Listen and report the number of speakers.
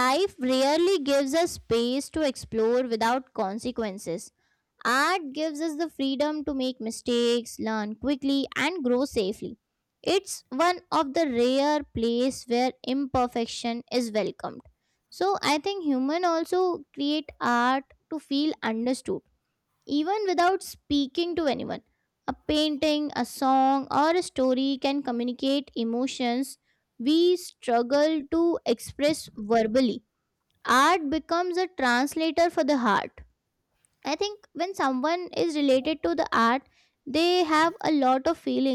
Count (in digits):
1